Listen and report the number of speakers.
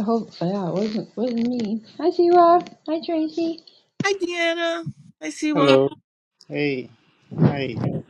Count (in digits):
3